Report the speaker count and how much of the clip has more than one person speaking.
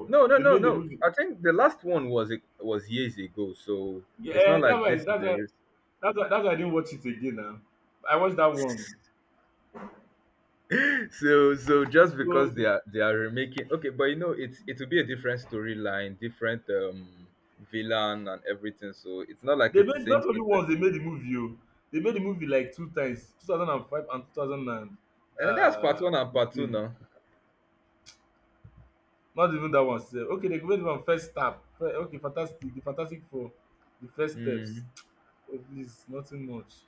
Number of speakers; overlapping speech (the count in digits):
2, about 10%